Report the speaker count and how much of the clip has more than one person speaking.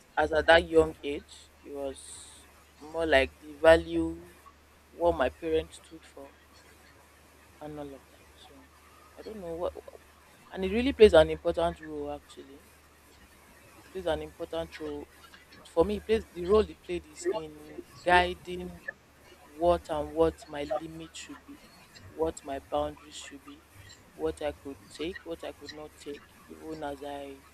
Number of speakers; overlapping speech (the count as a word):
one, no overlap